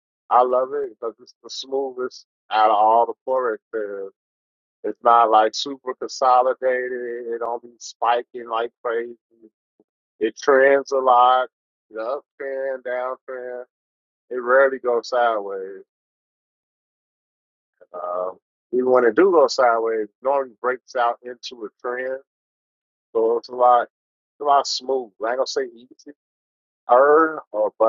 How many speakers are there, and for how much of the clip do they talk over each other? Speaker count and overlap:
1, no overlap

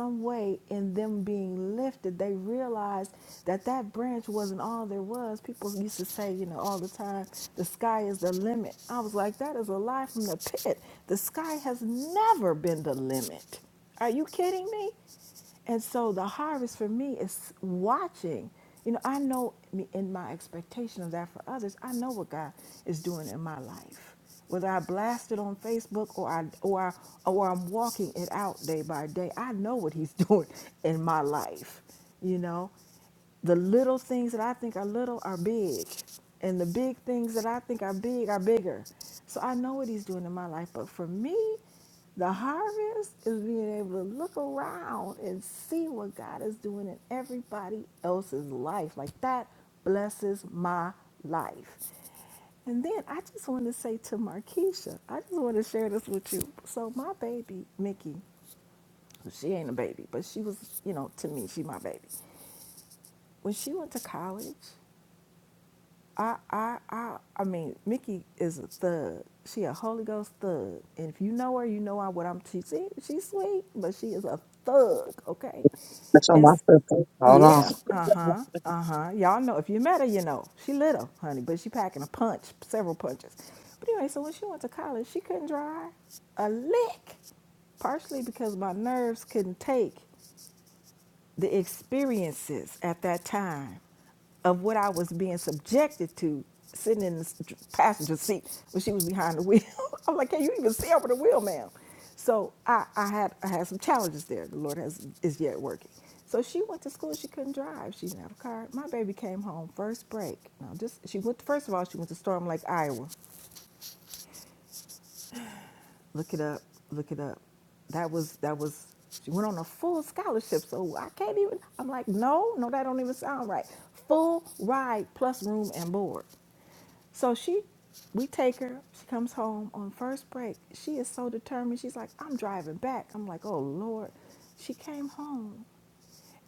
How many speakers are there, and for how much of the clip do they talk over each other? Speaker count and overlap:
2, under 1%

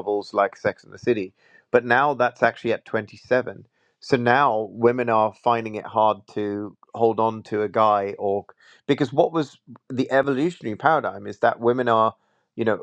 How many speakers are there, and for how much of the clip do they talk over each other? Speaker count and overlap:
1, no overlap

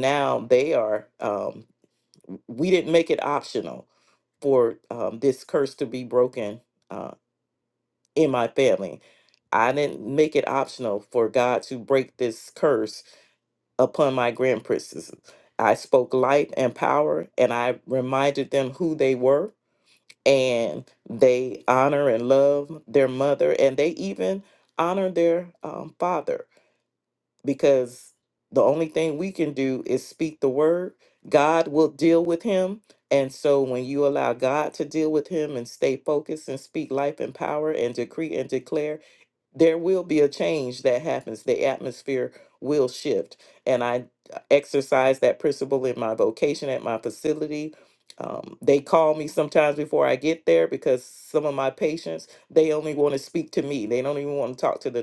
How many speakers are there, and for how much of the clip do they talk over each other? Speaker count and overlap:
1, no overlap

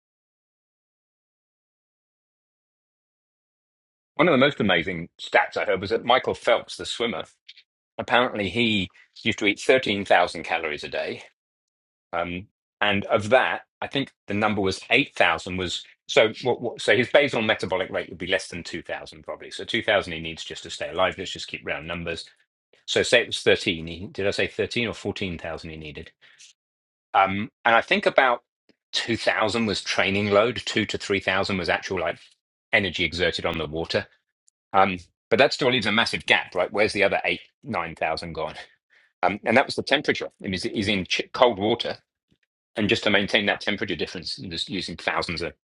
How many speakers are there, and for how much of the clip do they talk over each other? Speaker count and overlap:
1, no overlap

